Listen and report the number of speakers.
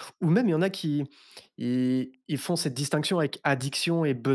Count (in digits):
1